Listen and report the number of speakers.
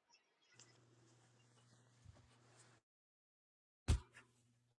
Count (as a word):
zero